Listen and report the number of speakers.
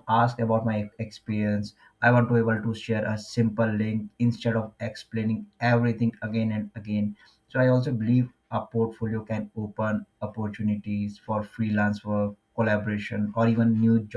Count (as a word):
one